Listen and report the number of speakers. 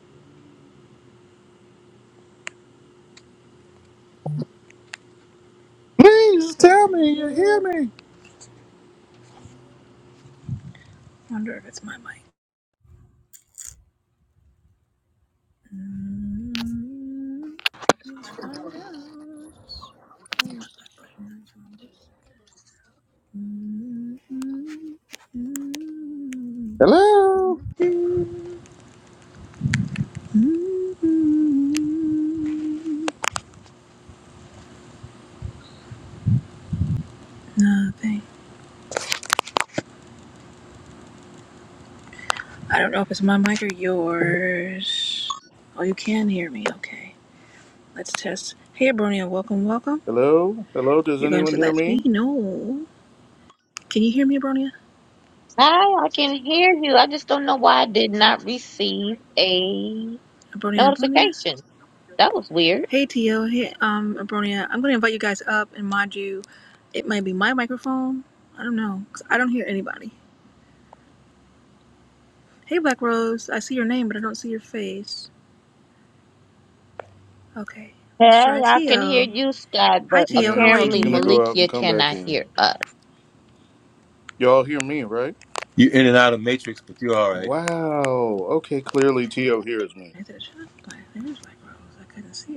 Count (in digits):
4